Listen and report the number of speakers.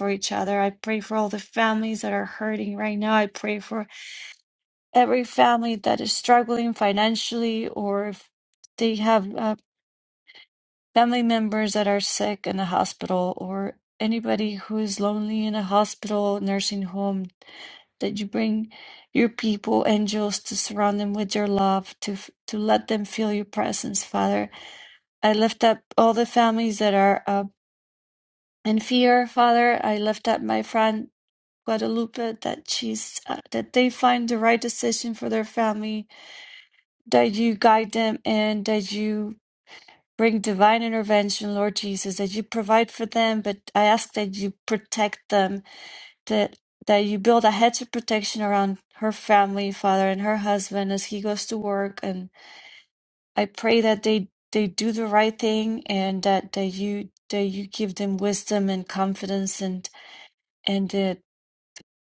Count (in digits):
1